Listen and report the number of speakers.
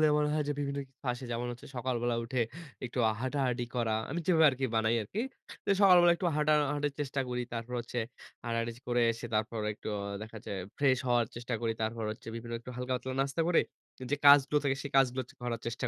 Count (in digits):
1